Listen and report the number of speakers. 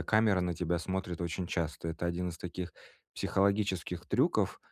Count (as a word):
one